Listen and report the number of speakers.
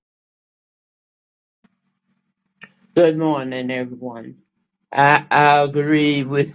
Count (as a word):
one